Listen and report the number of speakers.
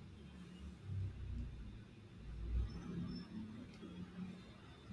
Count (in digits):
0